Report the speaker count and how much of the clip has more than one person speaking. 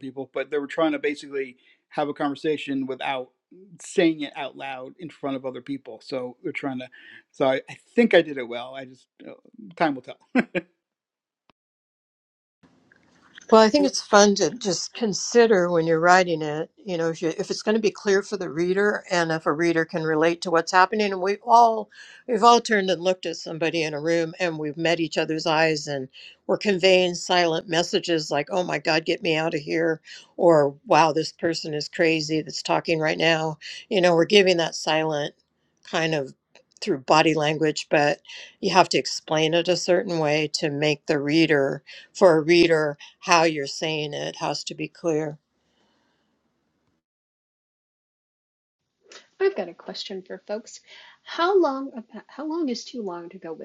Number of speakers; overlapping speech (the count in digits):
3, no overlap